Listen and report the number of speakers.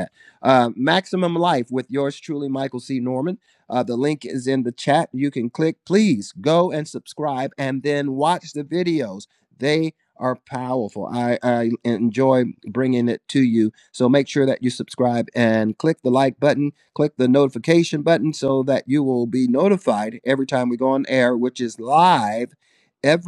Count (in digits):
1